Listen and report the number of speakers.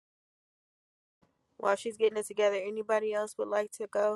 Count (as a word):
one